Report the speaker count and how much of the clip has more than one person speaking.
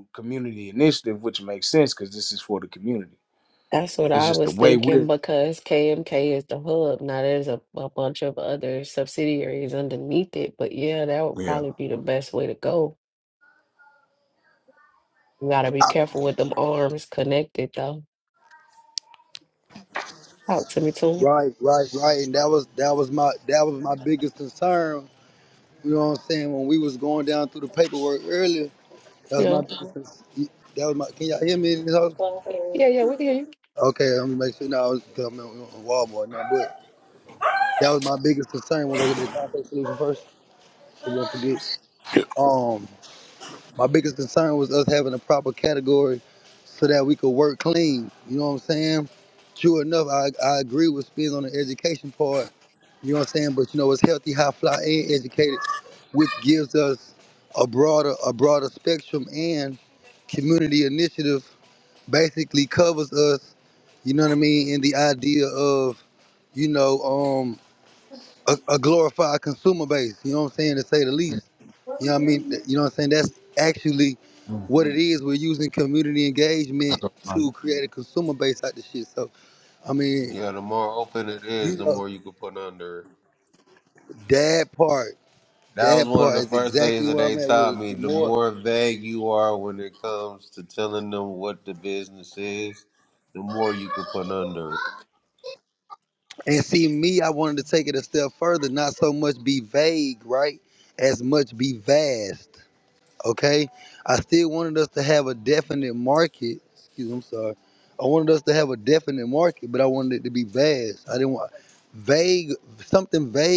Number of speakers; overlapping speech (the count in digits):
4, about 4%